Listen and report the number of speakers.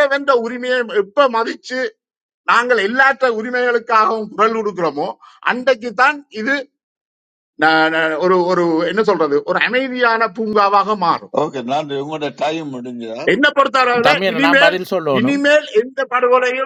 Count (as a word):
three